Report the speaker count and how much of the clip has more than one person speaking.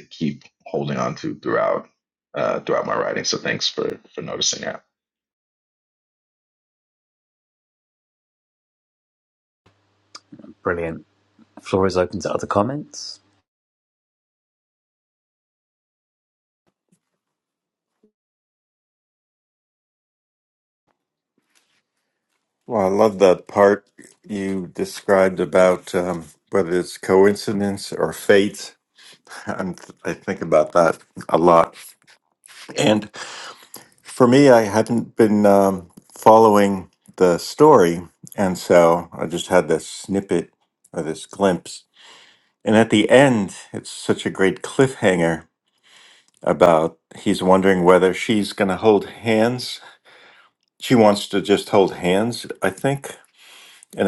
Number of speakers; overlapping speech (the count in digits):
3, no overlap